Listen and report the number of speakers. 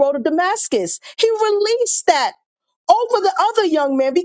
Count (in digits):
1